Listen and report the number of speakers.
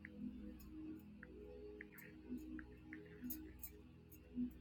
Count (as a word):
zero